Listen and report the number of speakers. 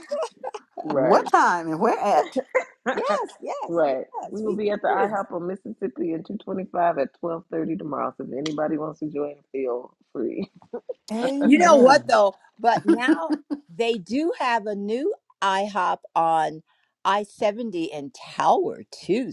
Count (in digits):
3